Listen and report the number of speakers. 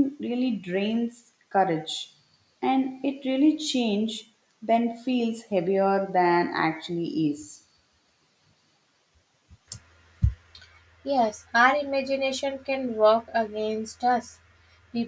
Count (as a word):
two